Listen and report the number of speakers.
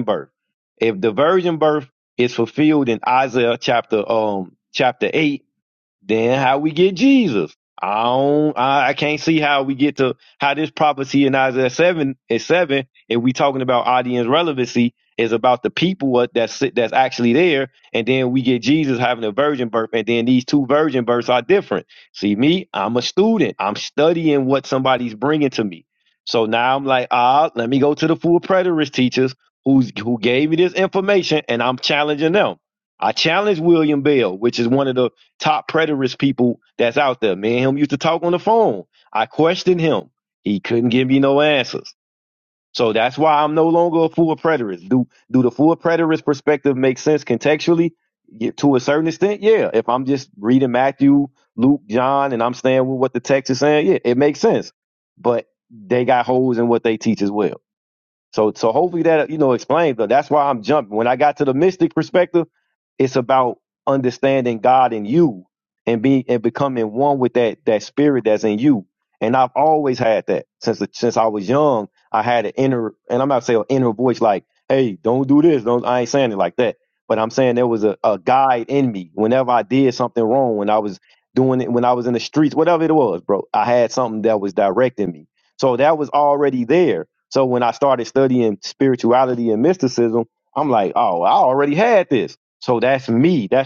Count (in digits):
1